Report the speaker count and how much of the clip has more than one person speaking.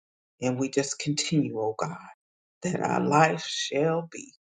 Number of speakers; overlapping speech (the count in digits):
1, no overlap